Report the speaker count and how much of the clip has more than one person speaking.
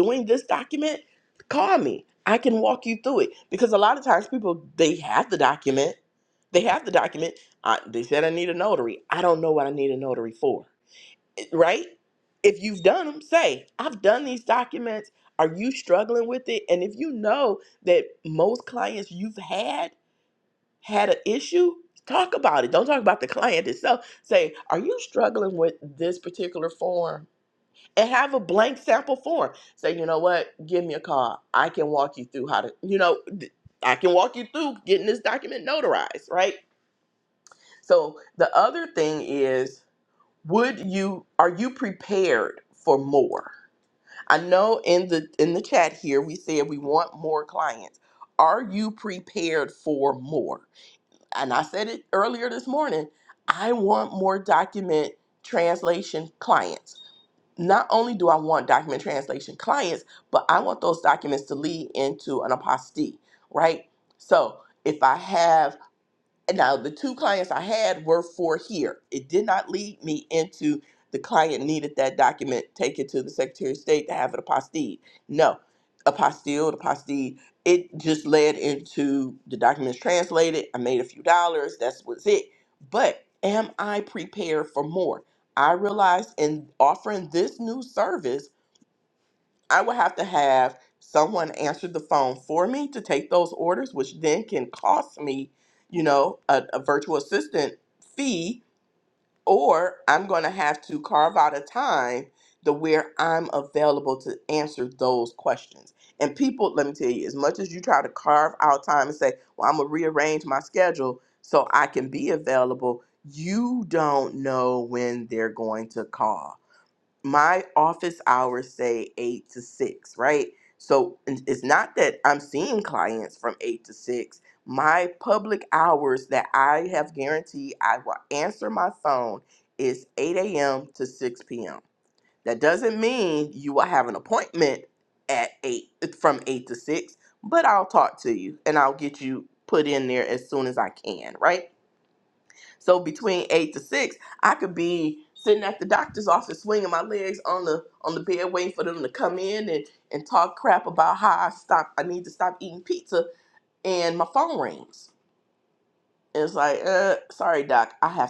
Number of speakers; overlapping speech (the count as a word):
one, no overlap